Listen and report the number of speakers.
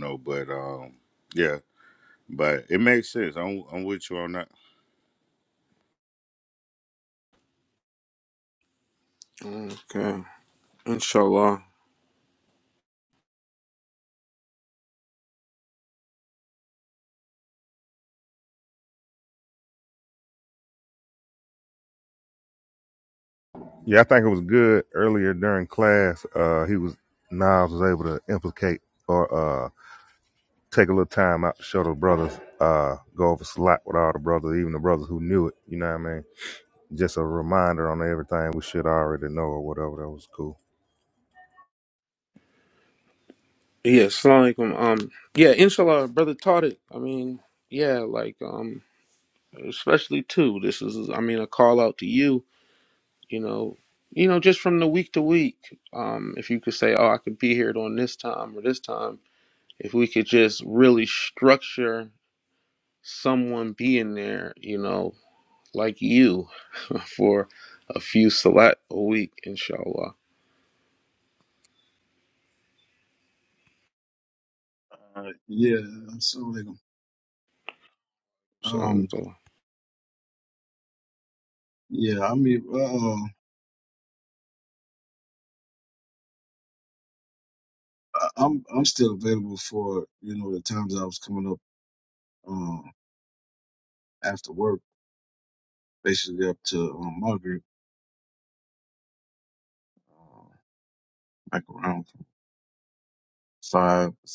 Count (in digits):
4